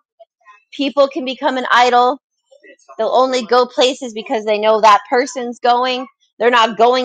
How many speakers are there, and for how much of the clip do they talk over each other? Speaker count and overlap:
1, no overlap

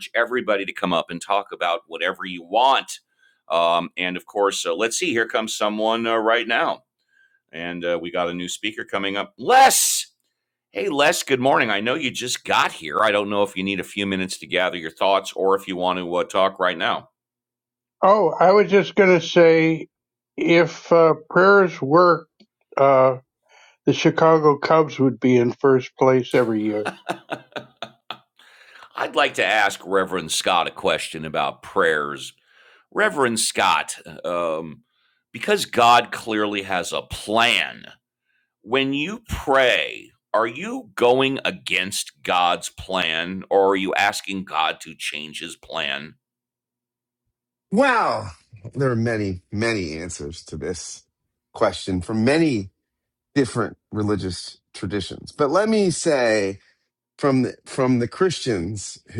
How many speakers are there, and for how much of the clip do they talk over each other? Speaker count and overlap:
3, no overlap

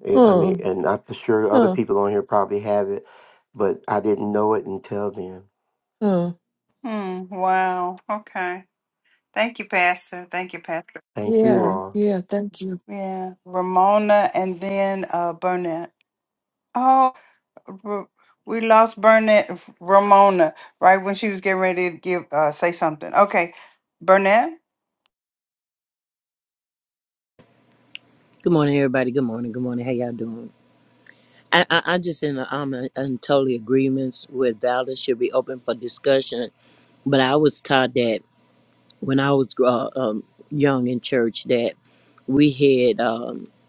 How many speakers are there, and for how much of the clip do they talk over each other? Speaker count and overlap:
4, about 3%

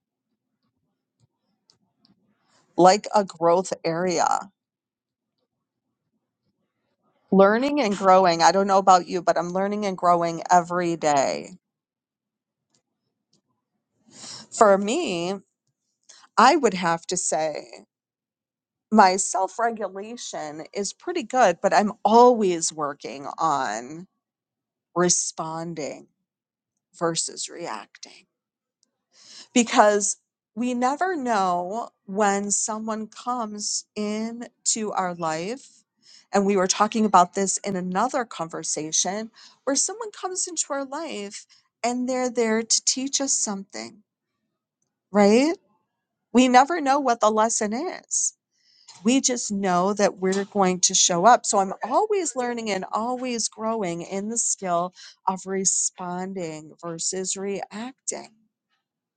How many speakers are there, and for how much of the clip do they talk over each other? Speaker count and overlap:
1, no overlap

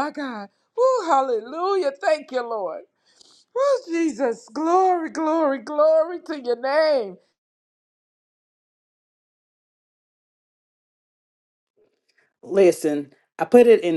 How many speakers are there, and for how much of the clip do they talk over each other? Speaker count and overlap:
2, no overlap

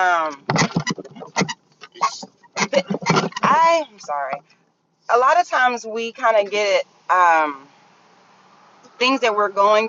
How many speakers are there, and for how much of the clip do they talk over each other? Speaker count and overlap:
1, no overlap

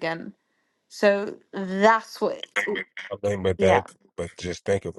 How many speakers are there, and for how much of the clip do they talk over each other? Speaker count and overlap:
2, about 5%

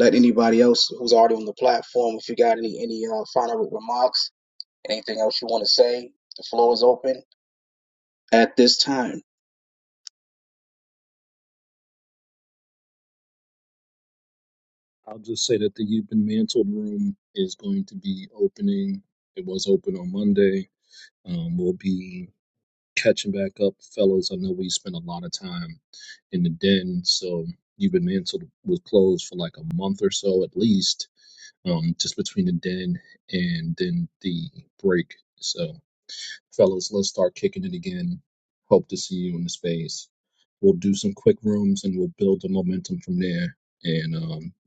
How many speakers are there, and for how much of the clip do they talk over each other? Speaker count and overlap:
2, no overlap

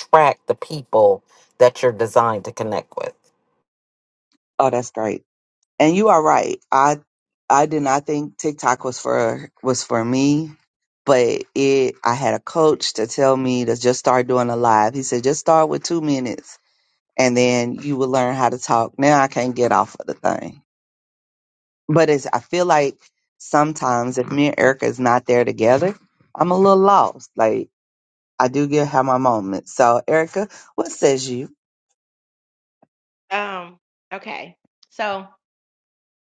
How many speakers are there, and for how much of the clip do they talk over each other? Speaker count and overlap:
3, no overlap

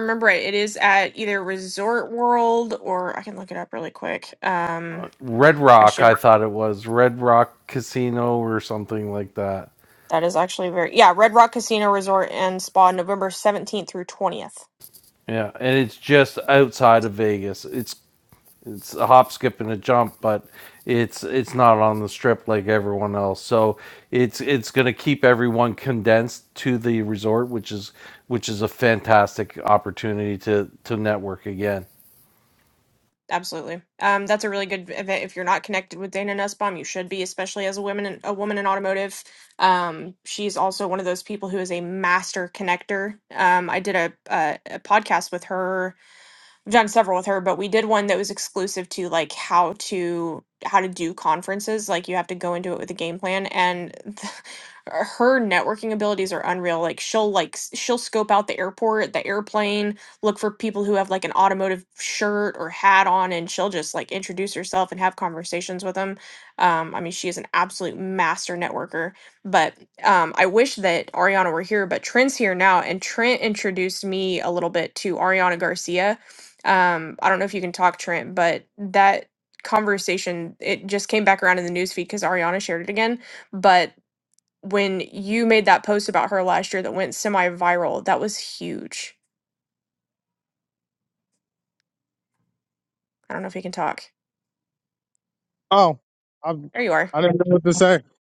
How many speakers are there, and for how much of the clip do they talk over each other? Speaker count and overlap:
3, under 1%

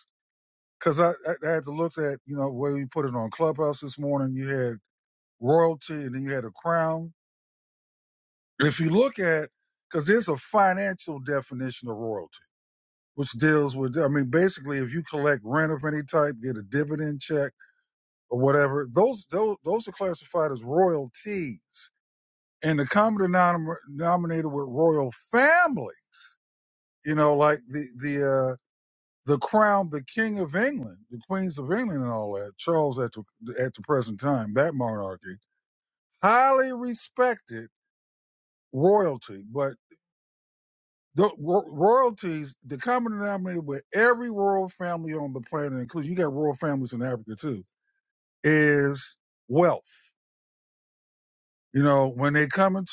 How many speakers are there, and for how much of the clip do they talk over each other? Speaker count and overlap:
1, no overlap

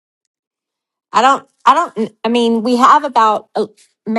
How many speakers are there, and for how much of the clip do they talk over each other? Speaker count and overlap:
1, no overlap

